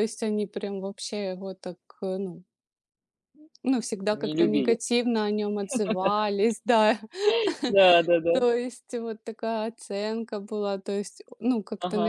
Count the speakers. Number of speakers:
two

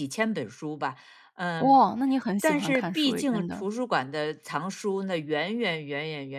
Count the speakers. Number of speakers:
two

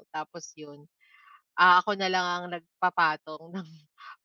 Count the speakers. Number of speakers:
one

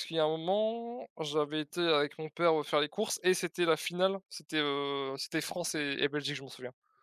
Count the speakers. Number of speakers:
one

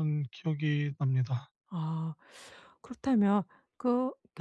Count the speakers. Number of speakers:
two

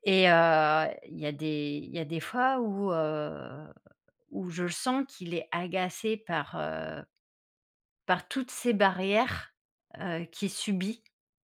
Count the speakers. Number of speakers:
one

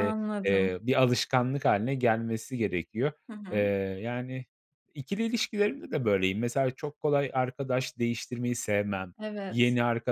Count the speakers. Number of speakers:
two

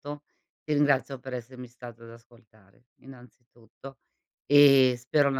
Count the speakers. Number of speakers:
one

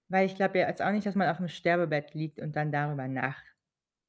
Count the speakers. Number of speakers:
one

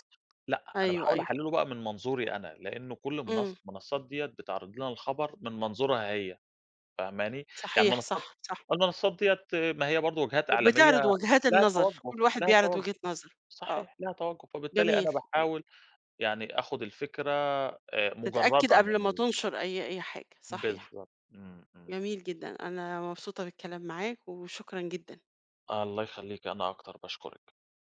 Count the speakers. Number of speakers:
two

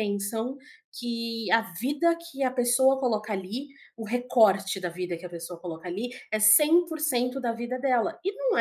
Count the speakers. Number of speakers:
one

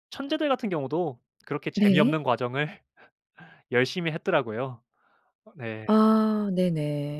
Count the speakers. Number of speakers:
two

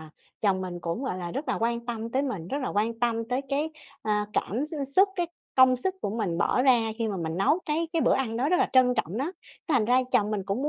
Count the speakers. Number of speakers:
one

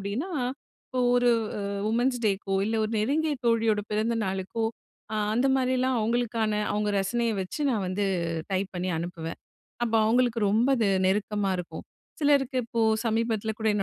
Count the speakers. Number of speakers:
one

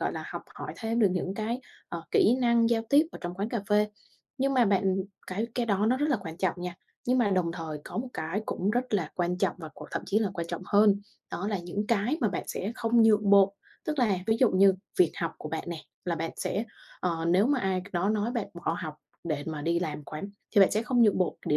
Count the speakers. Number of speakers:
one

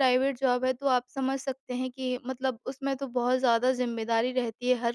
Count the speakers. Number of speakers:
one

